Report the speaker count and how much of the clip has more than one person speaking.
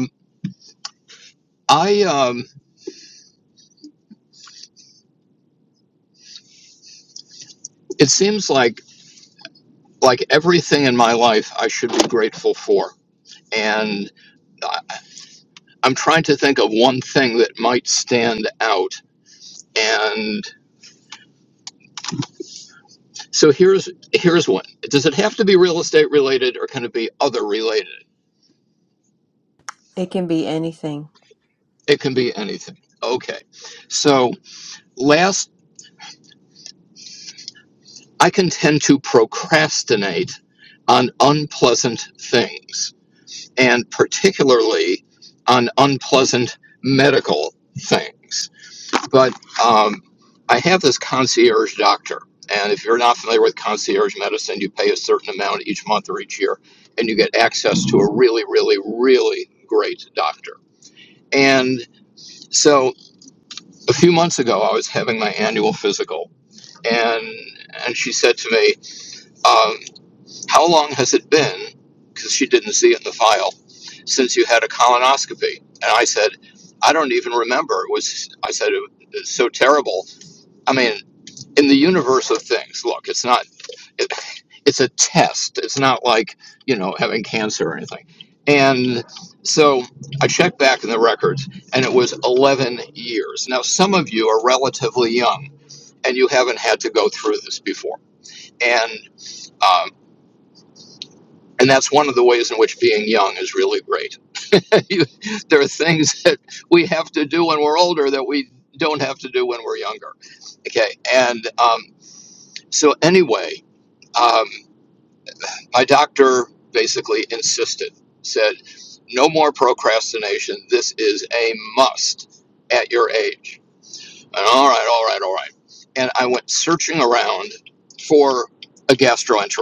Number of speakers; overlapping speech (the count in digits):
2, no overlap